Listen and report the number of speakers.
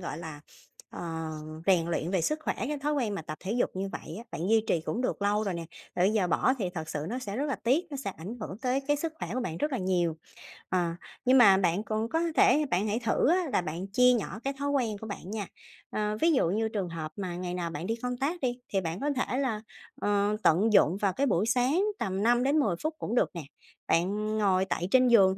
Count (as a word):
one